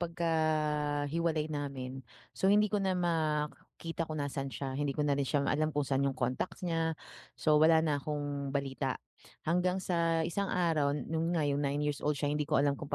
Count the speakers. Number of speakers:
1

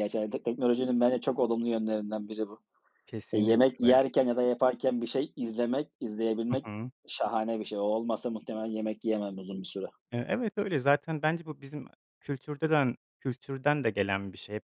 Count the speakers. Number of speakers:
2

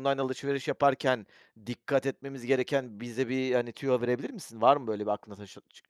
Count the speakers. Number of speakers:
1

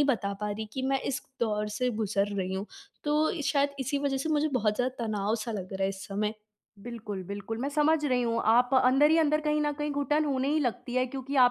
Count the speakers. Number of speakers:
2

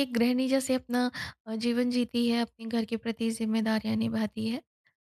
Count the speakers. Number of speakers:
1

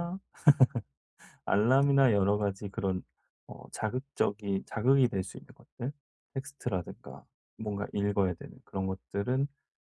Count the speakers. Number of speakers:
1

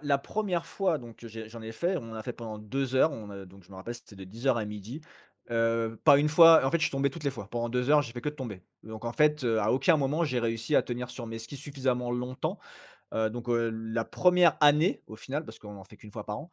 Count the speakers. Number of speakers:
1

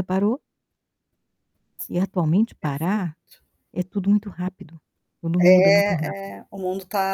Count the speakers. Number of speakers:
2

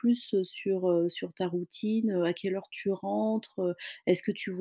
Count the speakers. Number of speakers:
1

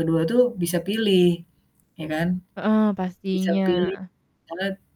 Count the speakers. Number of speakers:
2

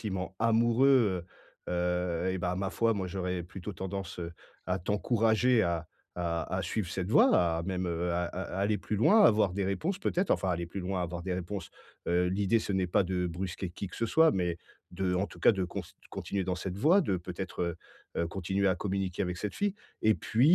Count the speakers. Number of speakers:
1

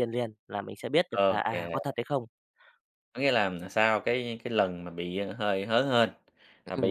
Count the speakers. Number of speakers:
2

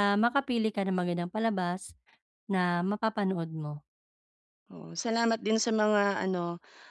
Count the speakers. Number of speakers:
2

